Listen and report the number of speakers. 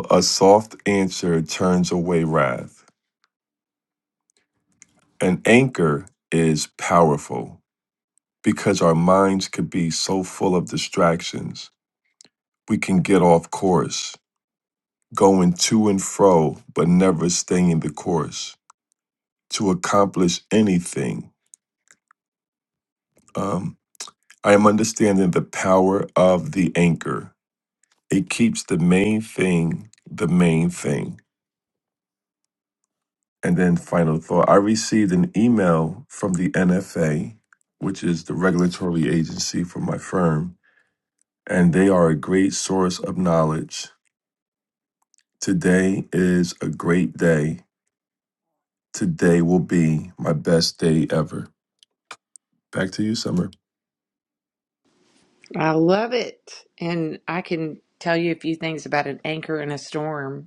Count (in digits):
2